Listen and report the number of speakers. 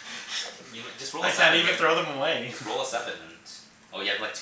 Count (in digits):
2